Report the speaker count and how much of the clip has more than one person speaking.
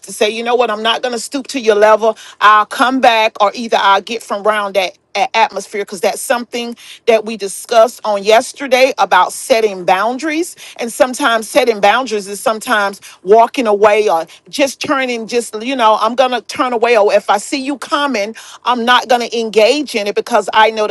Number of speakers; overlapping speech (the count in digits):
1, no overlap